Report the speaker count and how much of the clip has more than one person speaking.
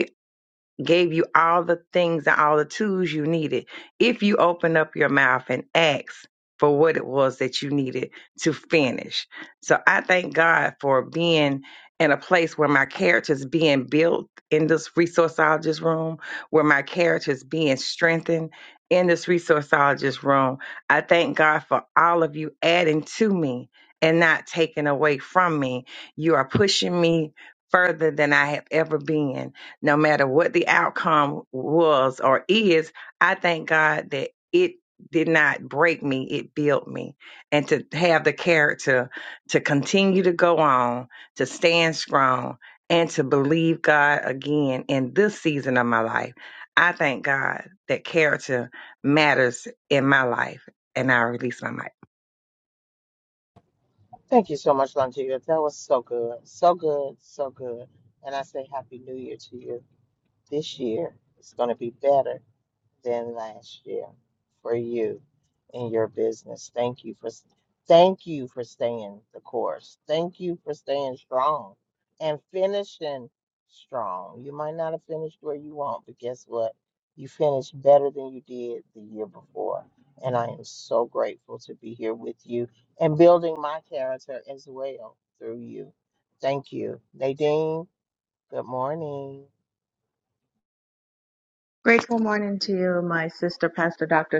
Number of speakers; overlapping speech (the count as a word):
three, no overlap